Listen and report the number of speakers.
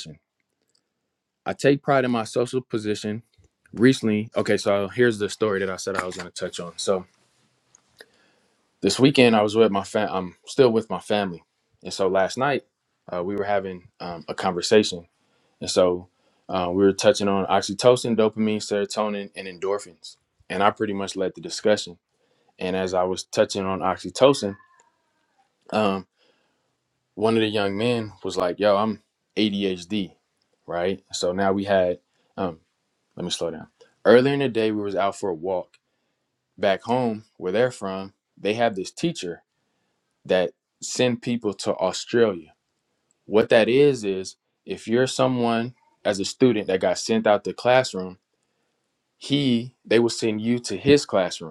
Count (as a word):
one